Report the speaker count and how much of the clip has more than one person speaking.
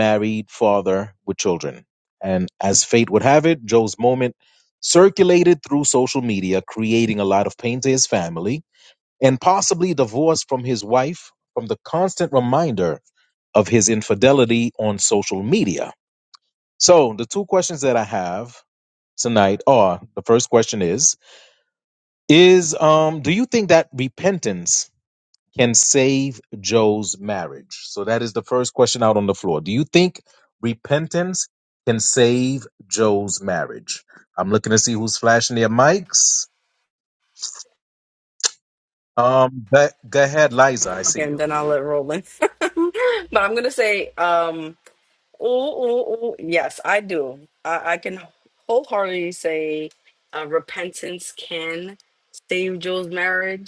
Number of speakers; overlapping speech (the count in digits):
2, about 1%